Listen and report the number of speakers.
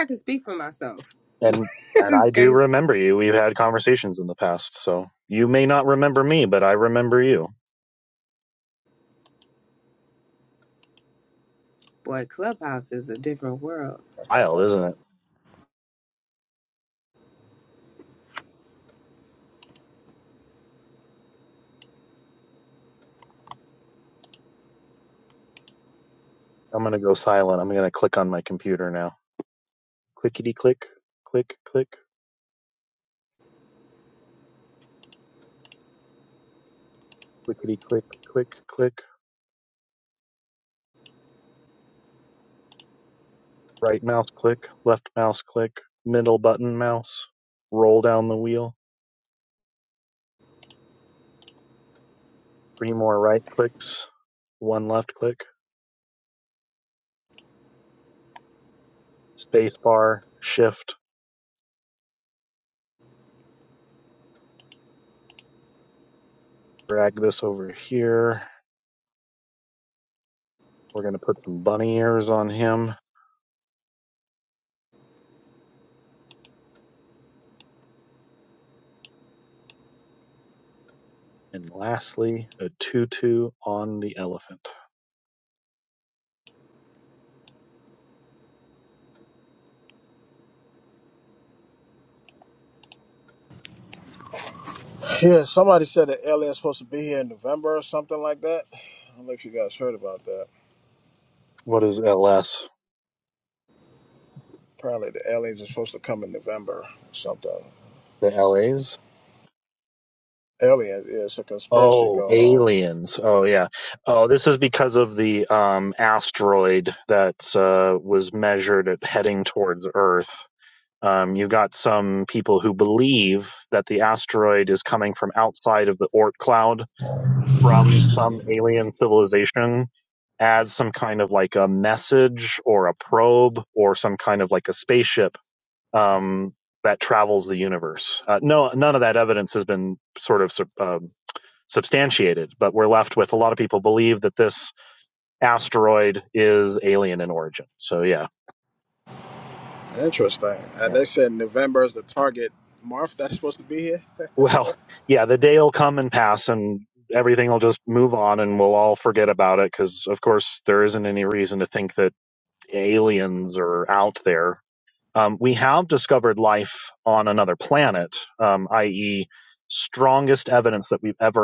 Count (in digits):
3